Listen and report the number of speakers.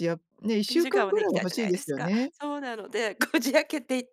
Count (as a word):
two